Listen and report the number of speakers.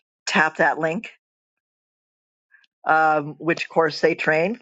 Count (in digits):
1